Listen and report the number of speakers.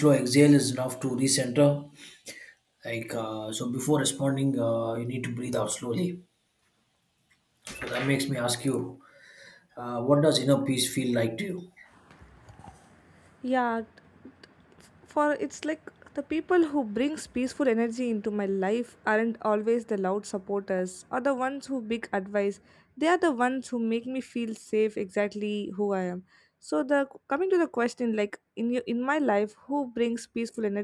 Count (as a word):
two